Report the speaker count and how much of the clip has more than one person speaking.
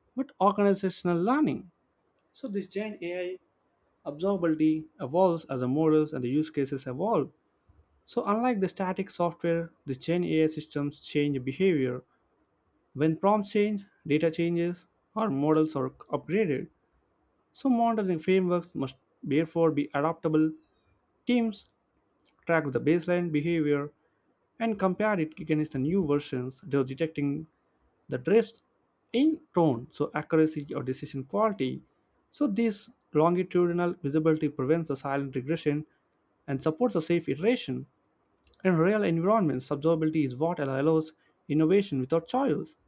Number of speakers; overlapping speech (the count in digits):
1, no overlap